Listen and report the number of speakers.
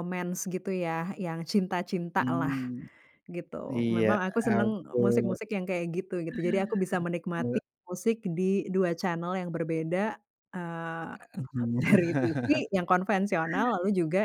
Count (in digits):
2